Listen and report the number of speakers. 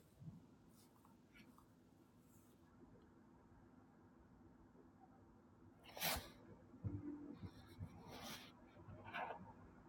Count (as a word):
zero